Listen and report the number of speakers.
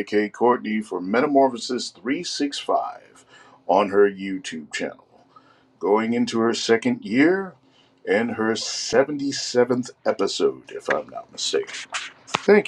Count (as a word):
one